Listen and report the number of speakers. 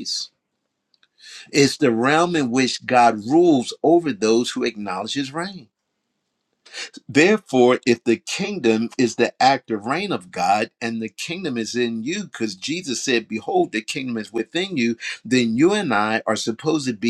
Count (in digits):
1